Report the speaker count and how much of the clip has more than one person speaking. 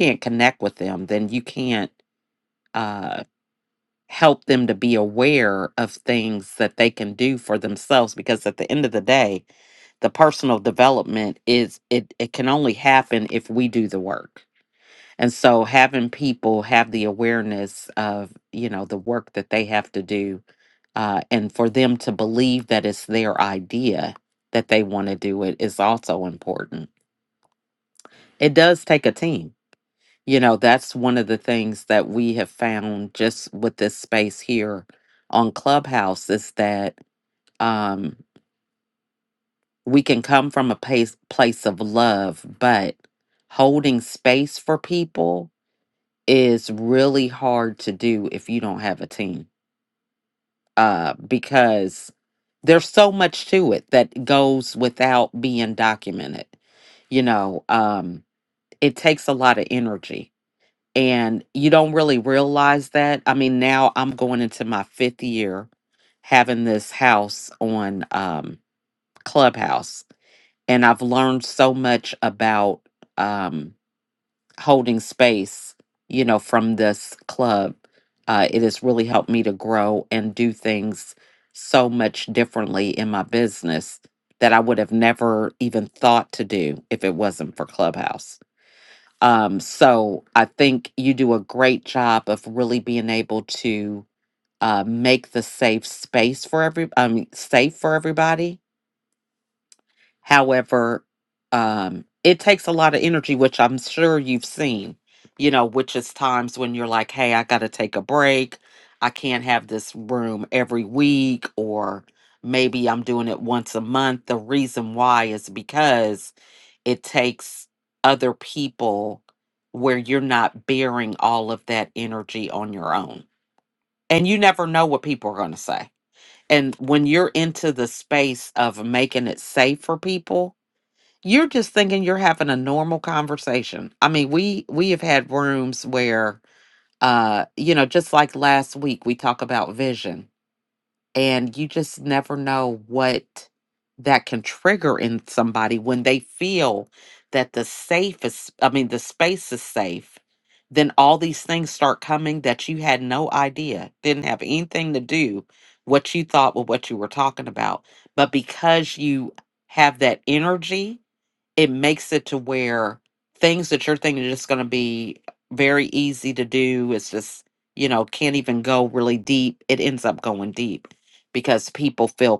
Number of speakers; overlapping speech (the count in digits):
1, no overlap